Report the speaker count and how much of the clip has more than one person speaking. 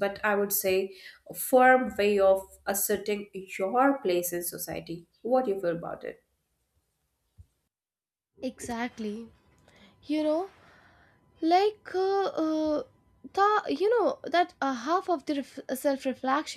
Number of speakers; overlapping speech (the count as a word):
two, no overlap